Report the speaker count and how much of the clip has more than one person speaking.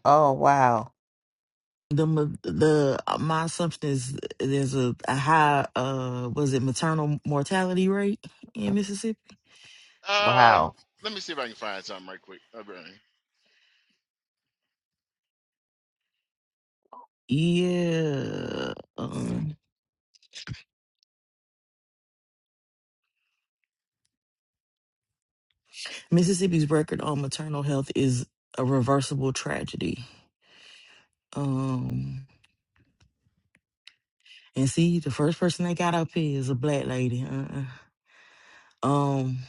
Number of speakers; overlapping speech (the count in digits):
3, about 1%